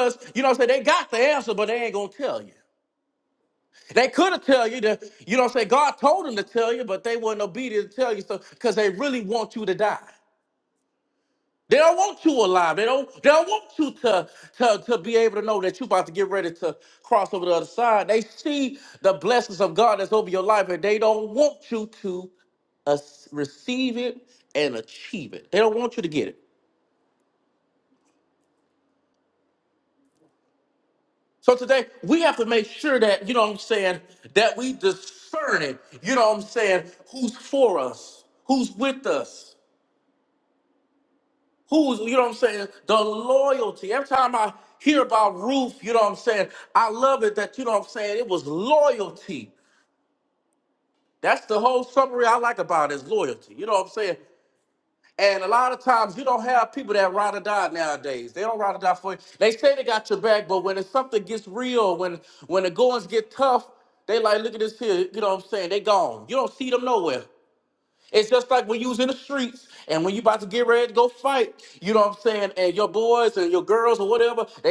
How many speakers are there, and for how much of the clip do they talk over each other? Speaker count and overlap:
one, no overlap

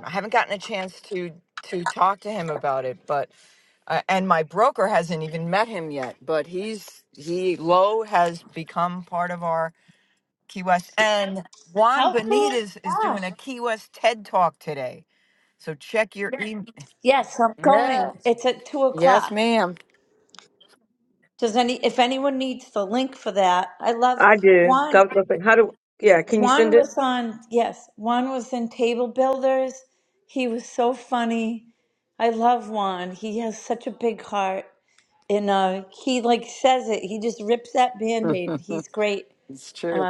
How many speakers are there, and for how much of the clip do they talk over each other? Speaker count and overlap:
three, about 9%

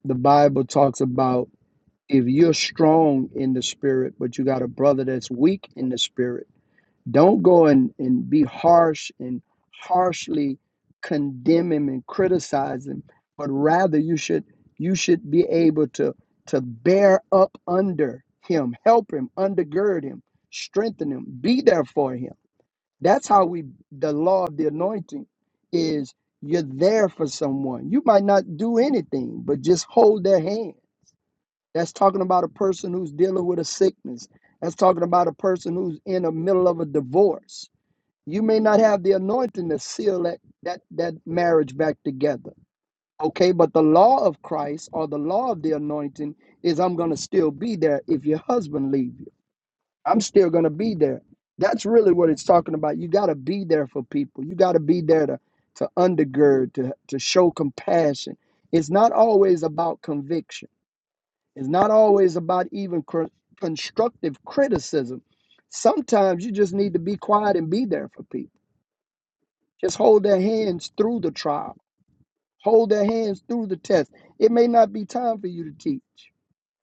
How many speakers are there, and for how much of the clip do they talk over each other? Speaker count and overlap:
one, no overlap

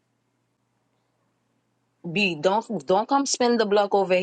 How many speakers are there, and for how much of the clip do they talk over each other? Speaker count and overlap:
one, no overlap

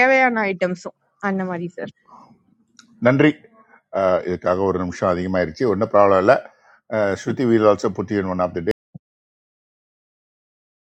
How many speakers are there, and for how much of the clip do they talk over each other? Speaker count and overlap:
two, no overlap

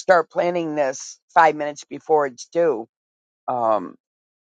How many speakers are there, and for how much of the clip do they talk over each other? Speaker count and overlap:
one, no overlap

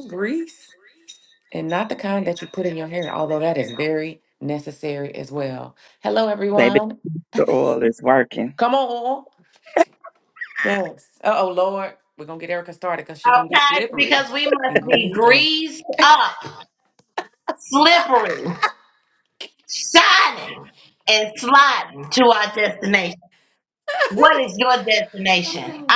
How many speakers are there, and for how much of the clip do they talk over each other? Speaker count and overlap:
three, about 9%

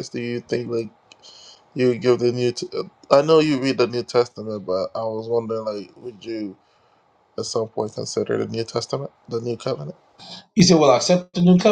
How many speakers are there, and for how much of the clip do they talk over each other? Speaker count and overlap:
two, no overlap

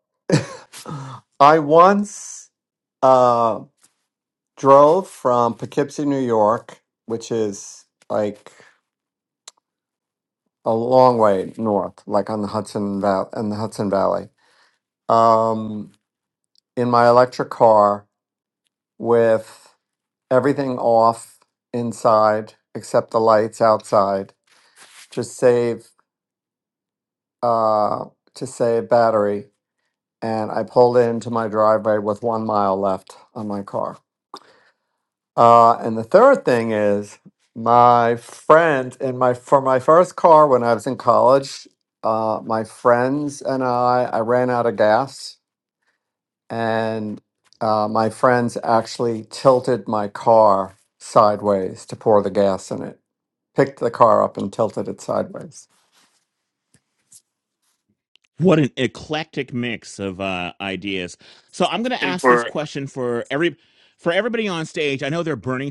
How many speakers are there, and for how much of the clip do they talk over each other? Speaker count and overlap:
two, no overlap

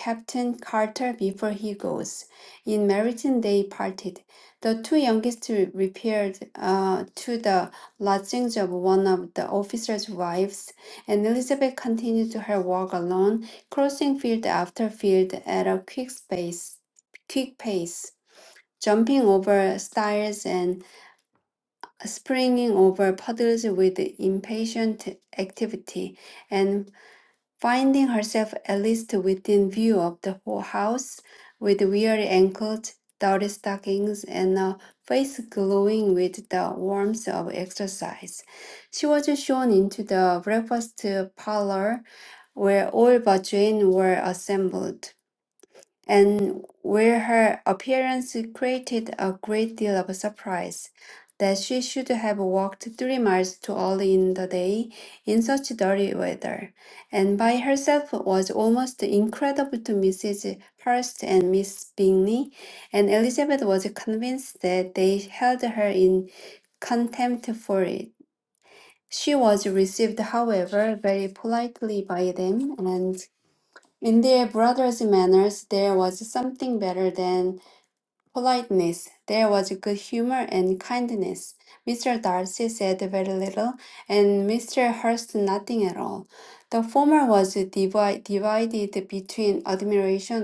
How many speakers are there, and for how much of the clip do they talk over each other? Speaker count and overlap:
one, no overlap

